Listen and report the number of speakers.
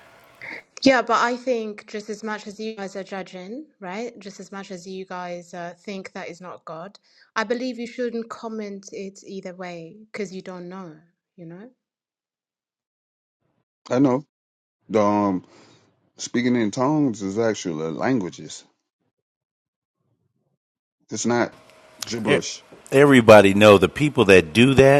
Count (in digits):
3